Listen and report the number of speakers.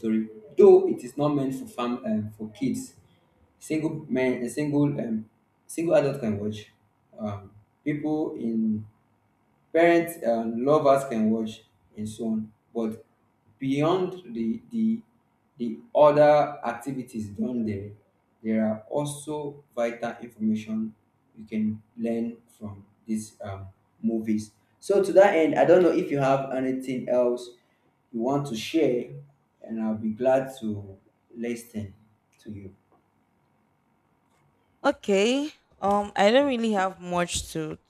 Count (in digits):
2